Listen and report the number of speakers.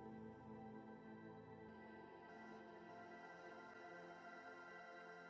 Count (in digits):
0